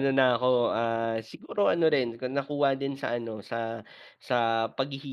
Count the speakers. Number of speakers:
1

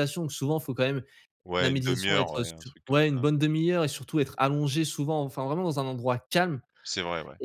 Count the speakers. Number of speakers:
2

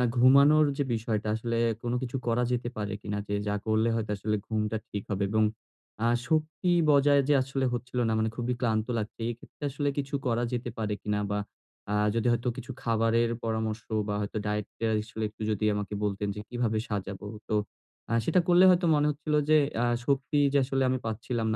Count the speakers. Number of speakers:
1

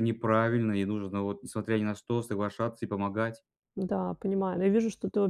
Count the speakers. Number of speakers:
2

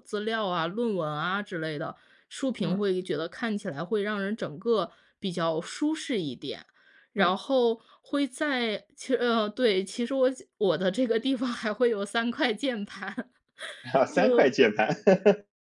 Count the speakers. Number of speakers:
2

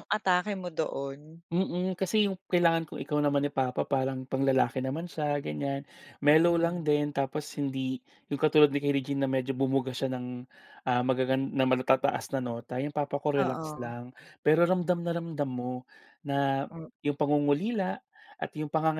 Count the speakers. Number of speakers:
2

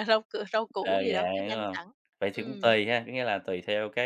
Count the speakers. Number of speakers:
2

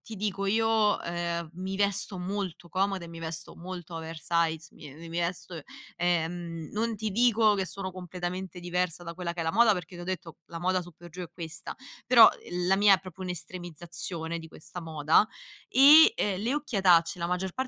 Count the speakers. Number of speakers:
1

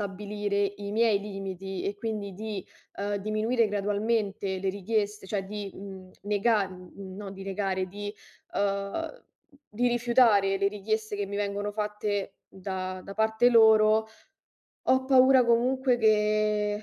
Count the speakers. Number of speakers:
1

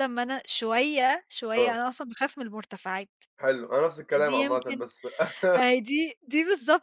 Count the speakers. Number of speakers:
2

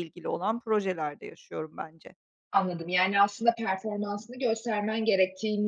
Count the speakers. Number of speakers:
2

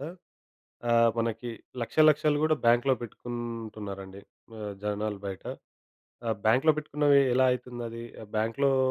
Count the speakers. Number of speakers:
1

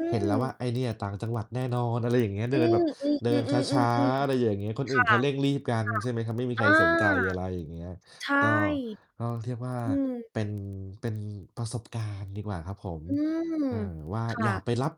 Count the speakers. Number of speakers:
2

